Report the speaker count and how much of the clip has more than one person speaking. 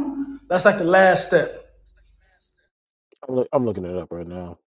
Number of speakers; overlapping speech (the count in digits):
2, no overlap